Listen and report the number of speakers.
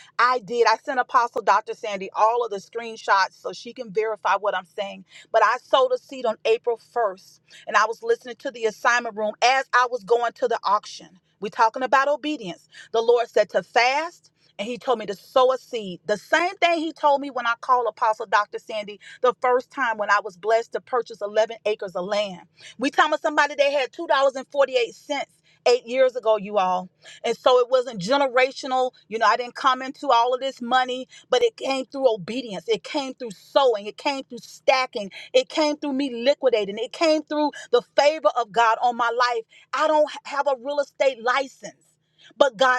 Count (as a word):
one